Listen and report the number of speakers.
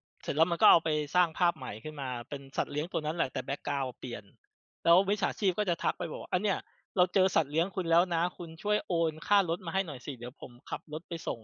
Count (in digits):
1